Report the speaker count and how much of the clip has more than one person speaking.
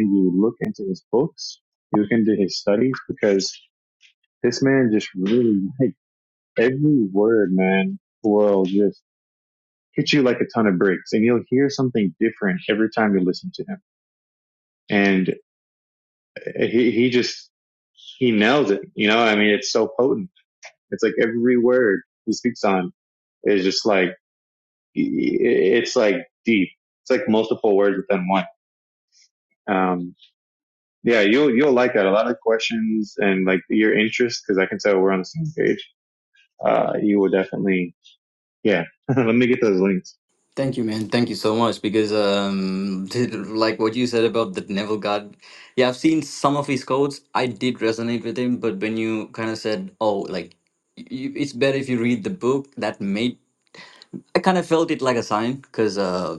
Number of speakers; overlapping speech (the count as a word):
two, no overlap